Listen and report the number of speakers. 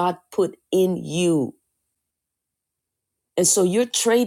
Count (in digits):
1